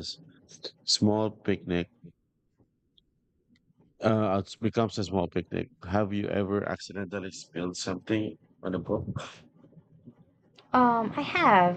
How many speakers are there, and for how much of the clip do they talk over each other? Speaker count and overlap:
2, no overlap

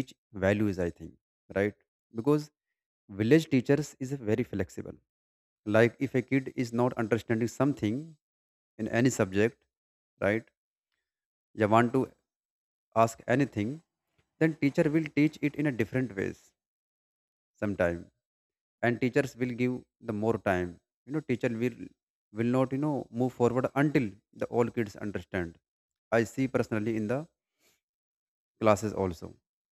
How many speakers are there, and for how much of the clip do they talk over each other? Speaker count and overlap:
1, no overlap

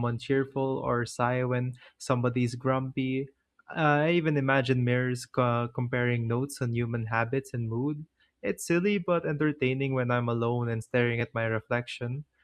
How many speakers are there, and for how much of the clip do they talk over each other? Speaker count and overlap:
1, no overlap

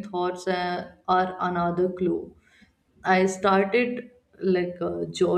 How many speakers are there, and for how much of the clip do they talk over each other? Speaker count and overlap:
1, no overlap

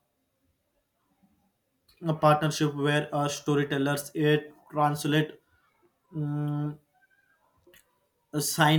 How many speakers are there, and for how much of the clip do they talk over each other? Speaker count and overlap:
1, no overlap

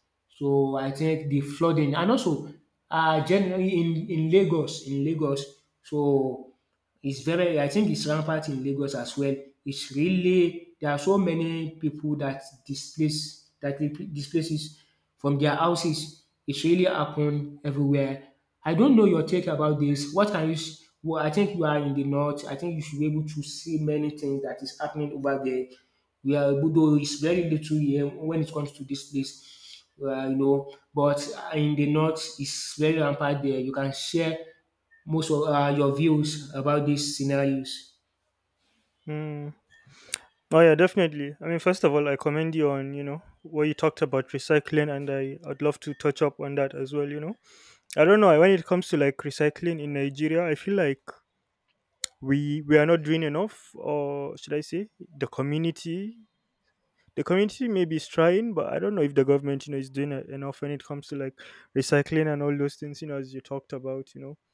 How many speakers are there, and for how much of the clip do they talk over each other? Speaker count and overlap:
2, no overlap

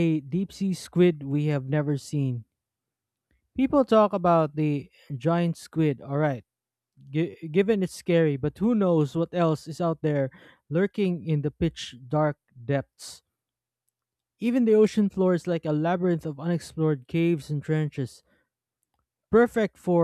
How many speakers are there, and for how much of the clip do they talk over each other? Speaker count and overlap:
1, no overlap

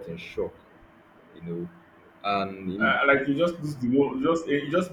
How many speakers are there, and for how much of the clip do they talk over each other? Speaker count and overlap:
2, about 4%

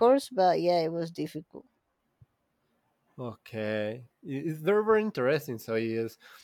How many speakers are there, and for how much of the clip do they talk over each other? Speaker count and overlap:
2, no overlap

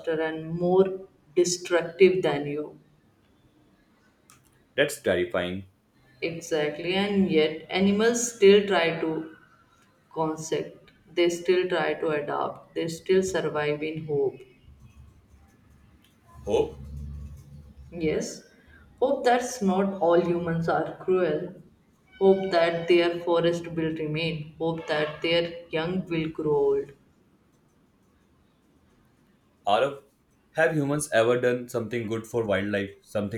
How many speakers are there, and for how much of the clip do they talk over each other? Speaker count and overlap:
2, no overlap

